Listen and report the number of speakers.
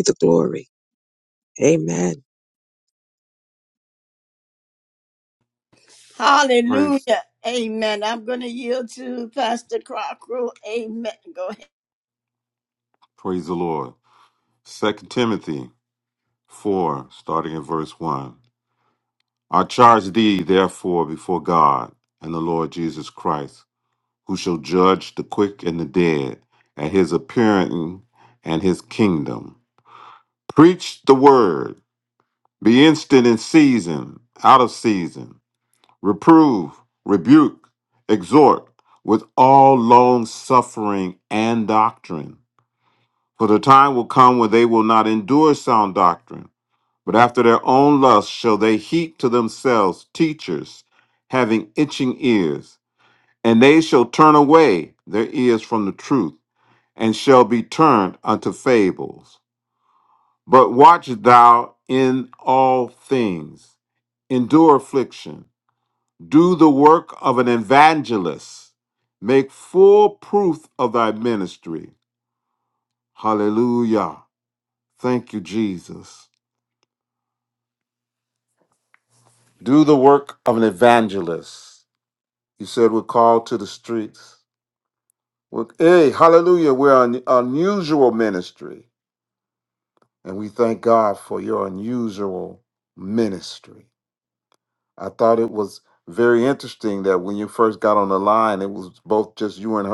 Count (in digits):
3